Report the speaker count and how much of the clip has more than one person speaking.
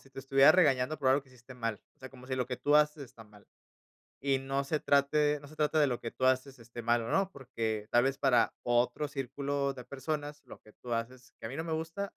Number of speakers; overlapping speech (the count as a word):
one, no overlap